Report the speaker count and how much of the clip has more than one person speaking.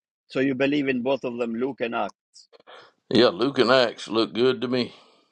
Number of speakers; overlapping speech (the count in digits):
2, no overlap